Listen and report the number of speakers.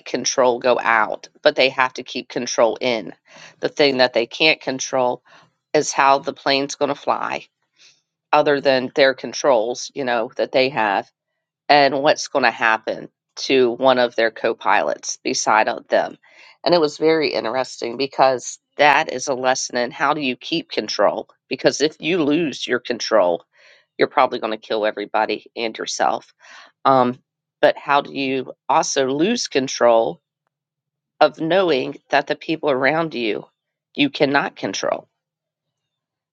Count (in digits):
1